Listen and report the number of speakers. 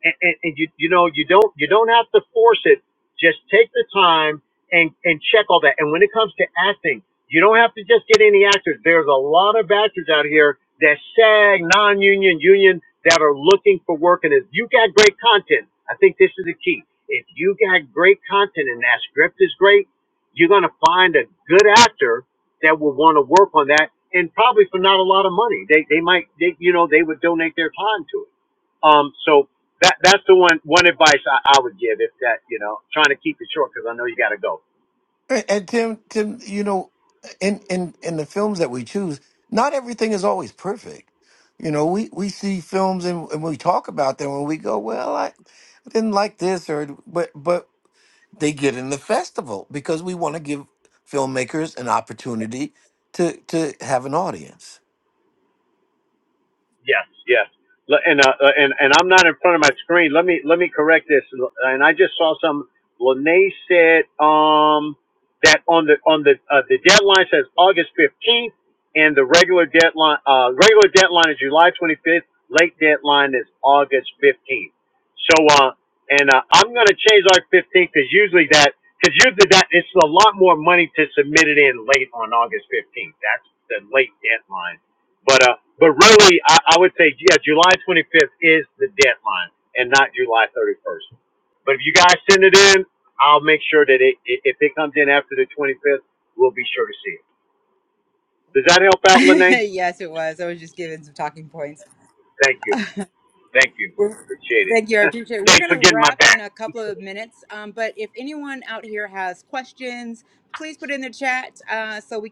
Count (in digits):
3